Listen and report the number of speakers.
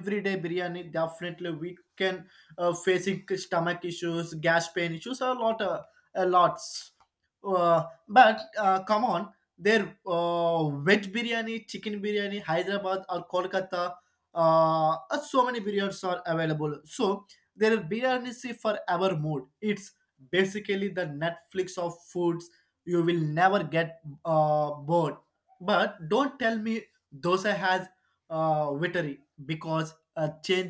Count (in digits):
1